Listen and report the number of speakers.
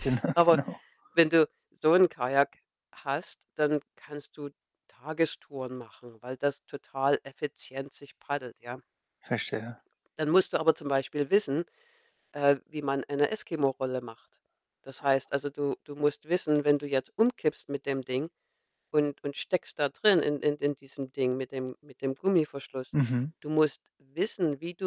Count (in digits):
2